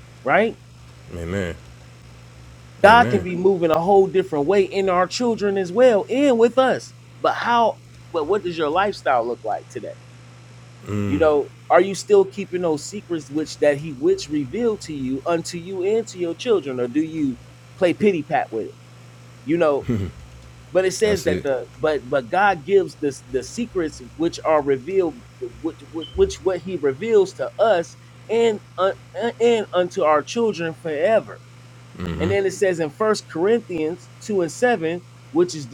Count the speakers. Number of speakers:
2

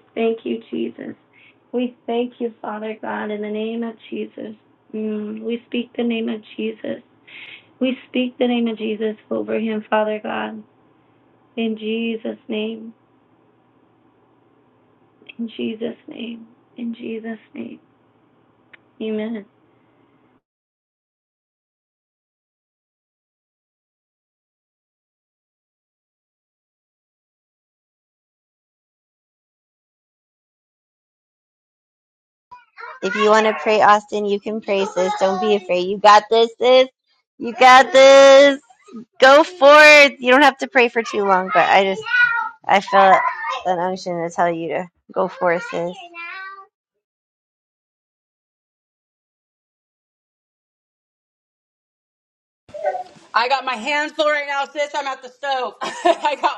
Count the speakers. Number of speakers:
3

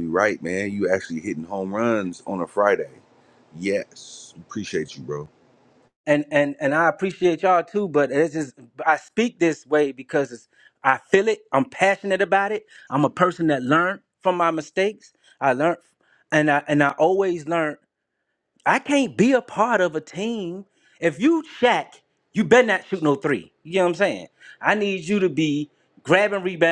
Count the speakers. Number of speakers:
2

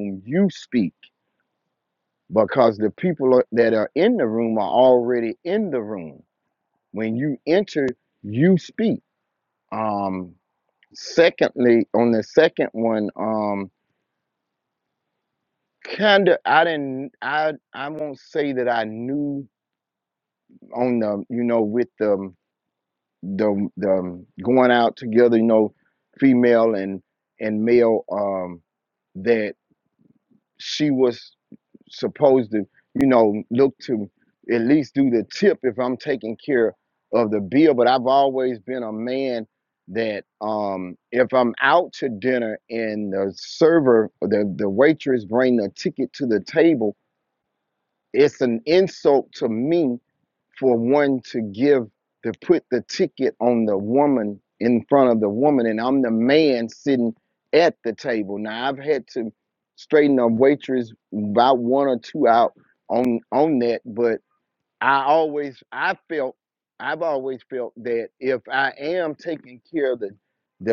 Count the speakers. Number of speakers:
1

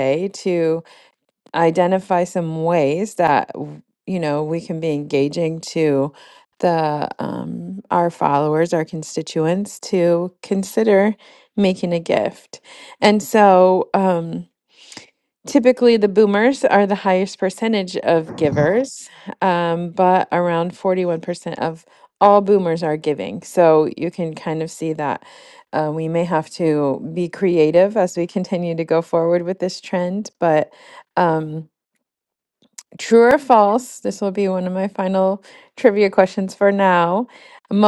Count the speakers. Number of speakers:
1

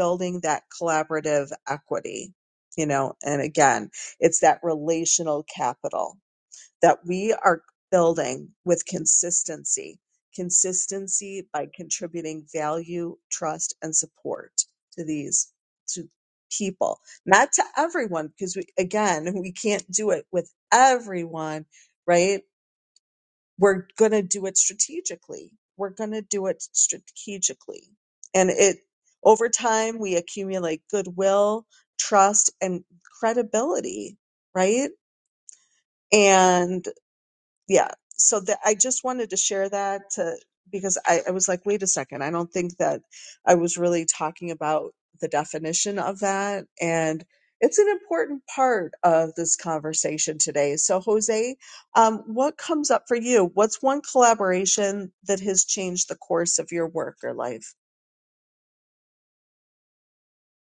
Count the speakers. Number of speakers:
1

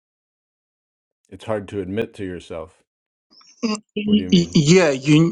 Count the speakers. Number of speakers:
2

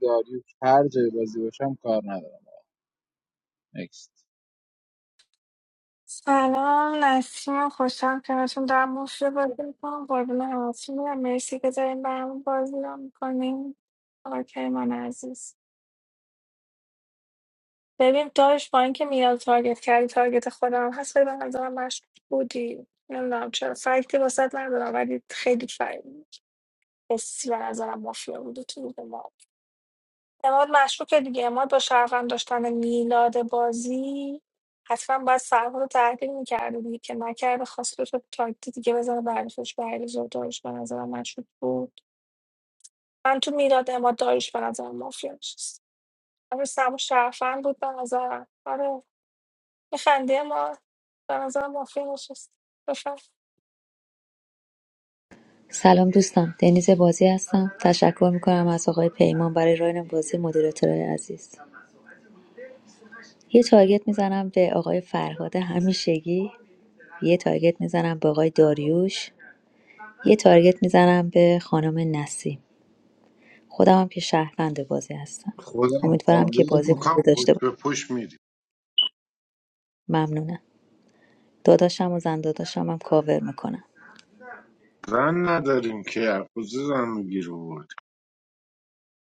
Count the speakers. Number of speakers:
4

